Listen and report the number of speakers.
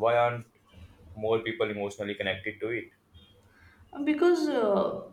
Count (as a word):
two